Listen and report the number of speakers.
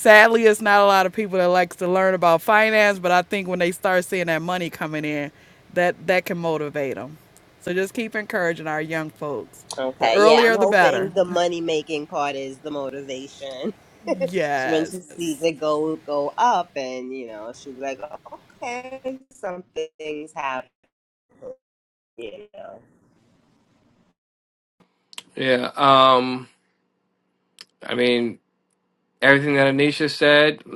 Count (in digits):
3